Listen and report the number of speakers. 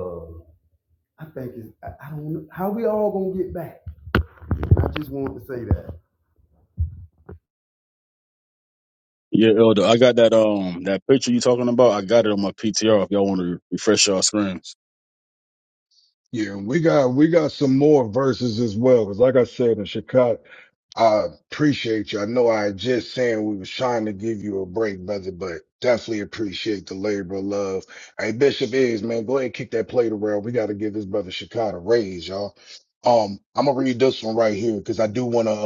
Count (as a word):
three